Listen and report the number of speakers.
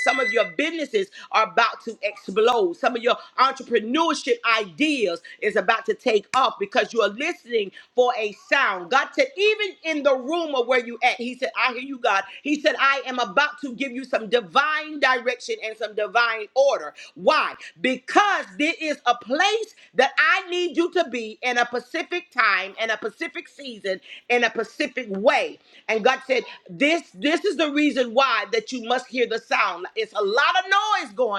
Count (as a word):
one